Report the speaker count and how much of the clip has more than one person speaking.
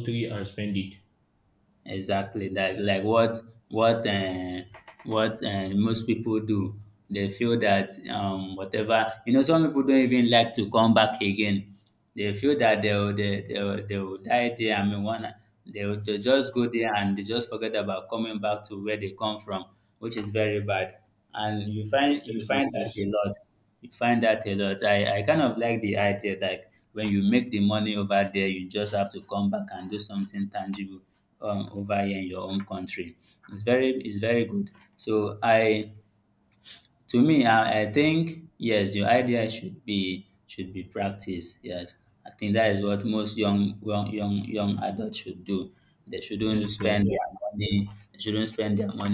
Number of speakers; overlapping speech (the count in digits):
2, about 4%